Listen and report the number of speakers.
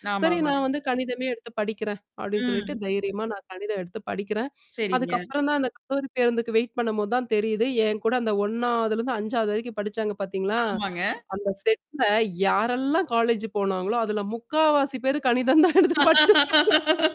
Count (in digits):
2